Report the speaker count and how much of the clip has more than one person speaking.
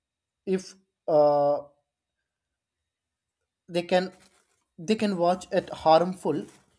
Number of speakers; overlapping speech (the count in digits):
1, no overlap